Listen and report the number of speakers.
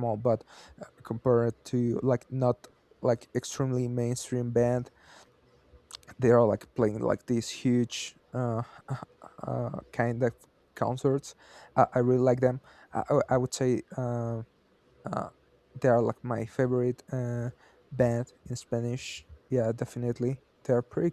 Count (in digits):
1